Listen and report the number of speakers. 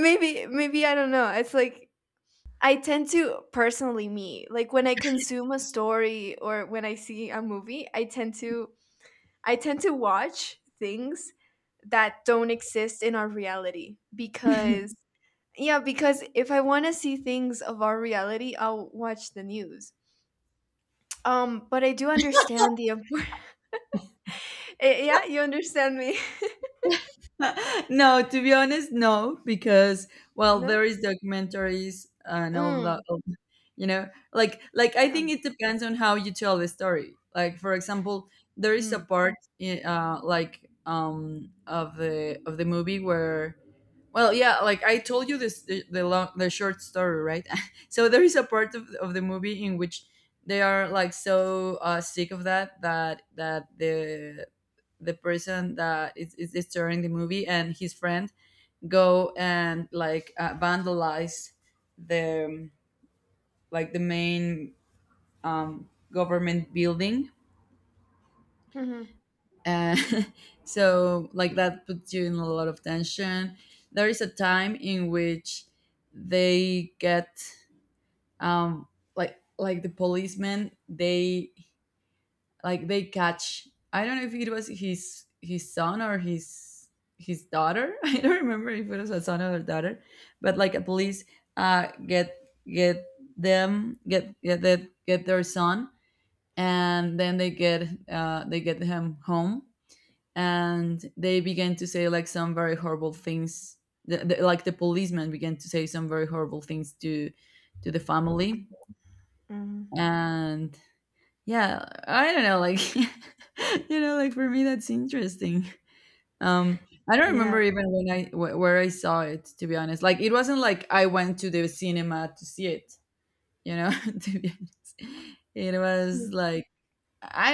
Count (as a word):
two